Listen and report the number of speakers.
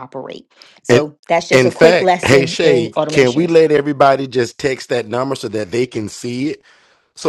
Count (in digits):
2